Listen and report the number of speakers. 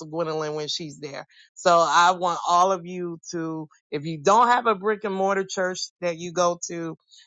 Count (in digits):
1